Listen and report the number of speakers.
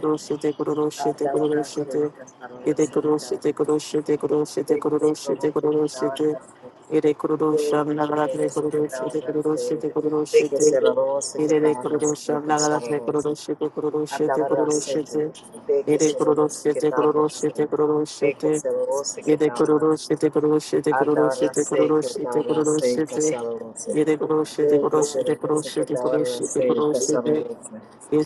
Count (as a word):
two